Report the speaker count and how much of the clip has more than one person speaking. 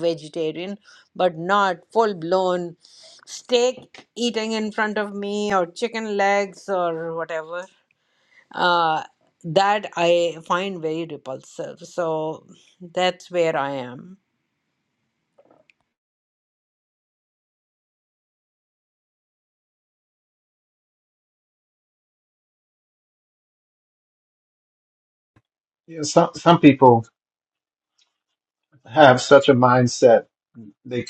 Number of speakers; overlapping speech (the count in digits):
2, no overlap